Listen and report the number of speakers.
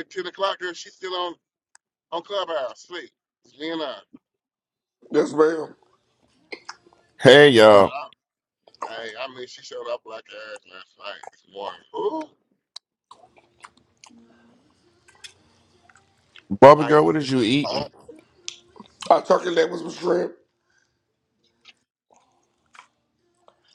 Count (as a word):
three